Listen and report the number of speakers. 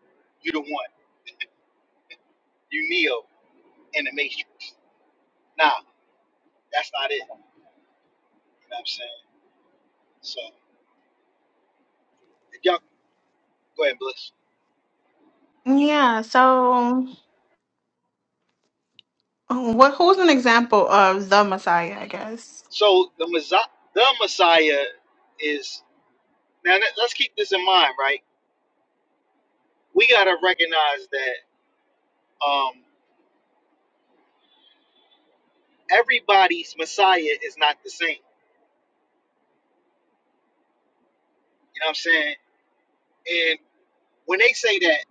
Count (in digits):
2